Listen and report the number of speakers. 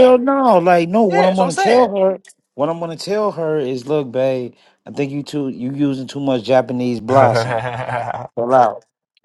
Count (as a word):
two